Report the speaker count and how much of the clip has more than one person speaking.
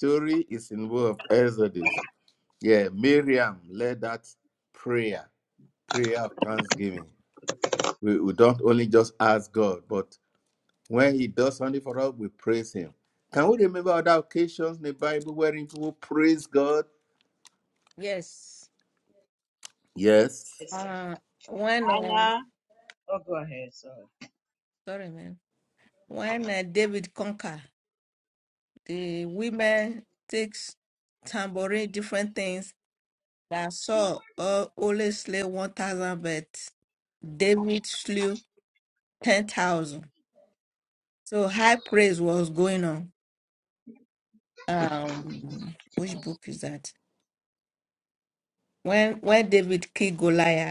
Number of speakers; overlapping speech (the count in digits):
3, about 1%